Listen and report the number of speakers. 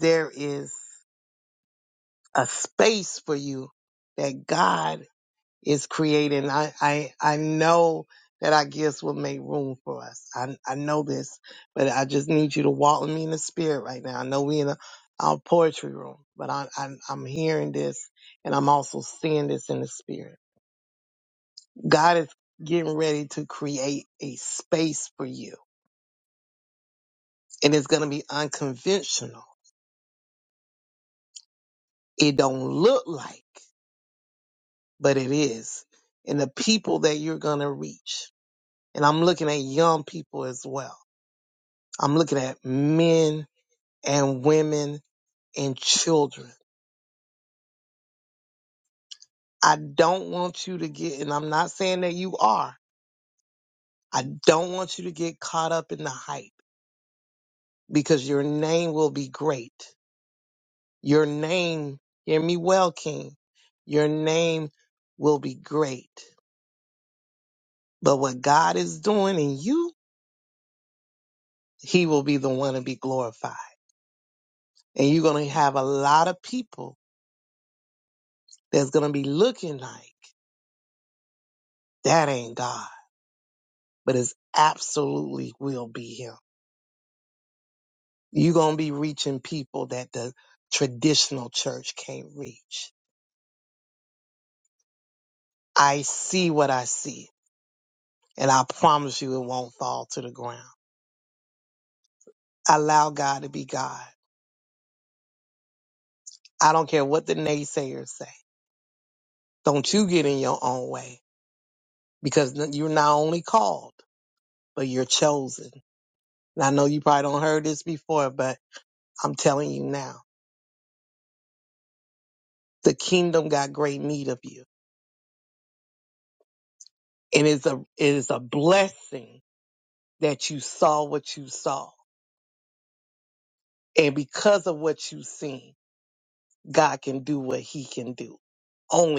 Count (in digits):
1